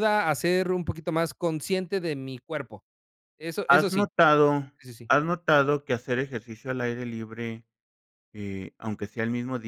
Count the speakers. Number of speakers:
2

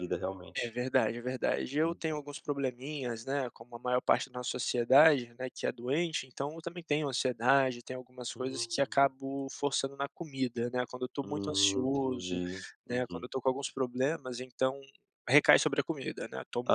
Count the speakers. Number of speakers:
2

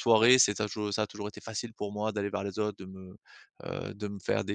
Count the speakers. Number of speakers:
1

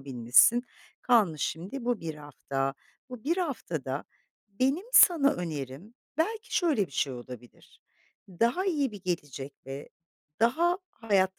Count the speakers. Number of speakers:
1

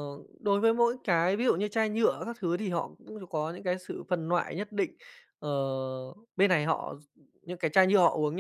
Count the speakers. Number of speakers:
1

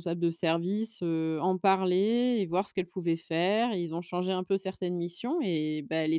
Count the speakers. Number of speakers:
1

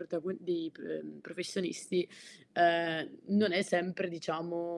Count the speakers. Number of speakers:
1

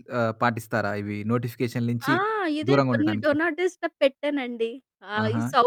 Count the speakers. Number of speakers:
2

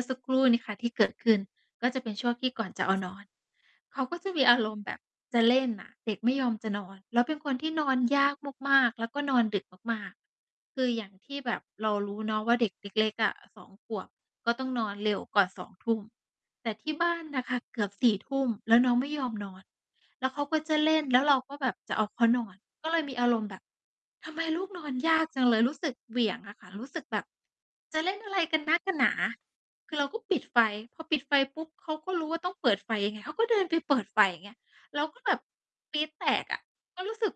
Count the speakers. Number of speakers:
1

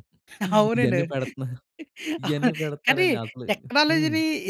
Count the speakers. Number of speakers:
2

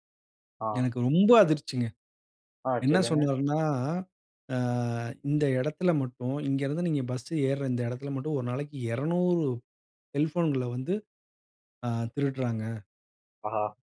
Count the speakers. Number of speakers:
2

